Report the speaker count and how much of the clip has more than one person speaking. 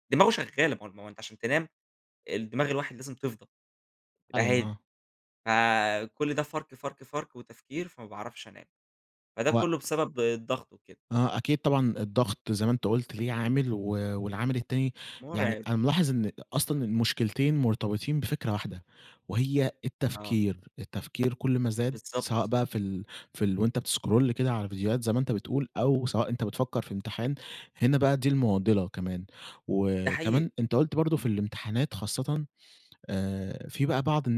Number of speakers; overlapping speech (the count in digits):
2, about 5%